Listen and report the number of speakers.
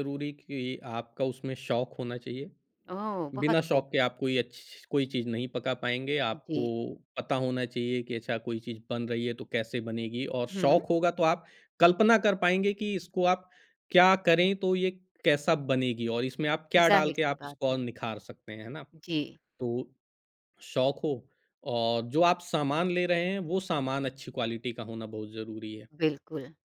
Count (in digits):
2